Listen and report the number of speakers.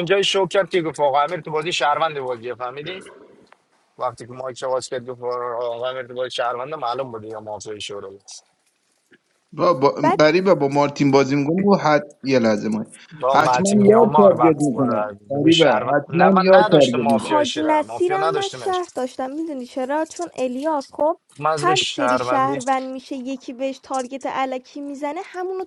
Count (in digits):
3